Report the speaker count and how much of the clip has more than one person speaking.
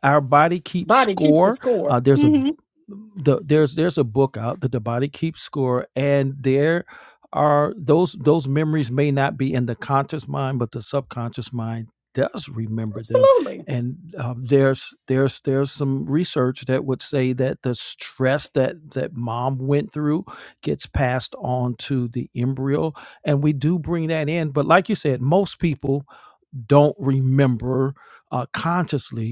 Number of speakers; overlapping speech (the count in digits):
2, about 6%